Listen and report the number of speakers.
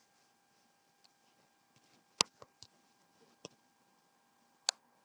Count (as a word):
zero